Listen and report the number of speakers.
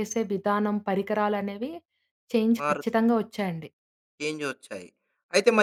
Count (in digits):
2